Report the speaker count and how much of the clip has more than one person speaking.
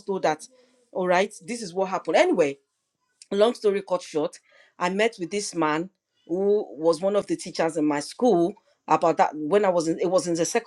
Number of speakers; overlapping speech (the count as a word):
one, no overlap